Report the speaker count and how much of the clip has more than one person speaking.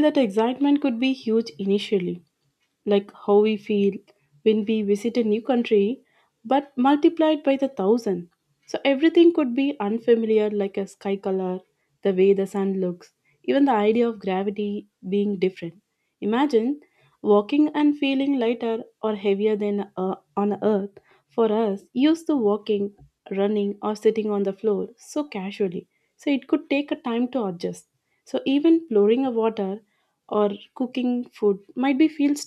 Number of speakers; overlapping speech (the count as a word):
one, no overlap